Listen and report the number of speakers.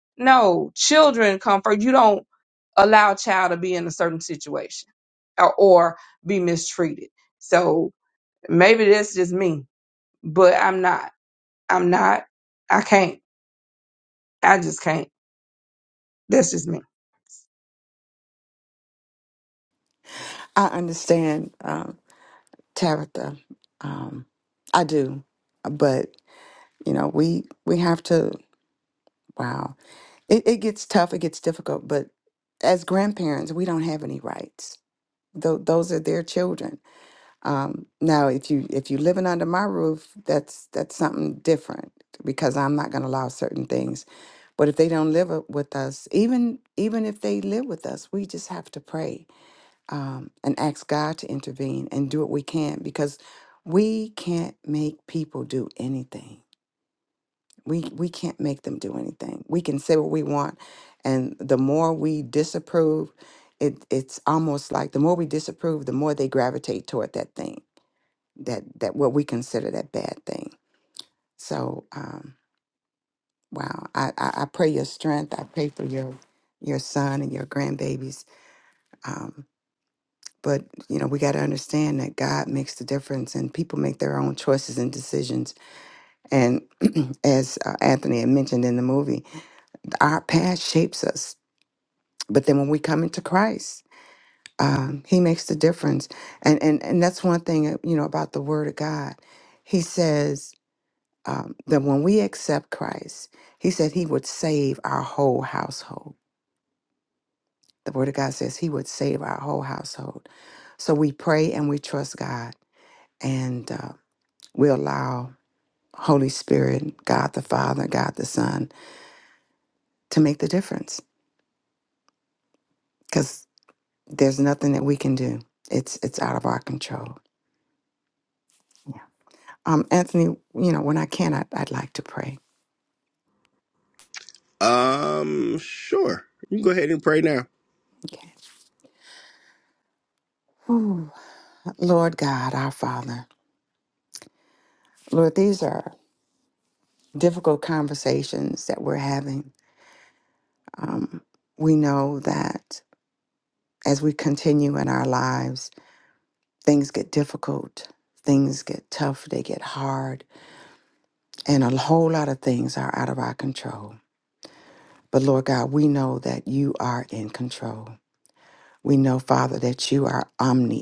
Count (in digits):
3